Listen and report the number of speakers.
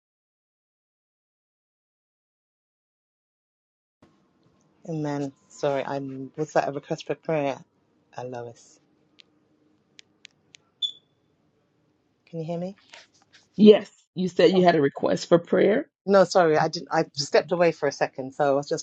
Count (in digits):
2